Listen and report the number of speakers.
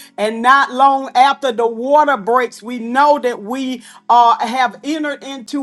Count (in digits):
1